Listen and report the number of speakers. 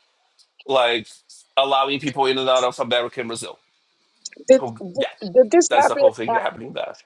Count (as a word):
two